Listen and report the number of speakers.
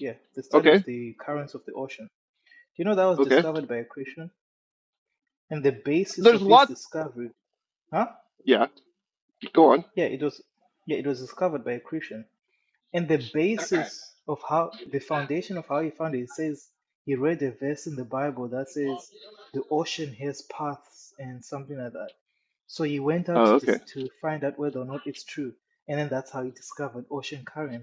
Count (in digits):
2